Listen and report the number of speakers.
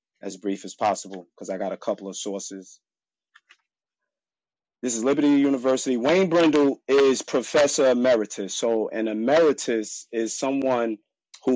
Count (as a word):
one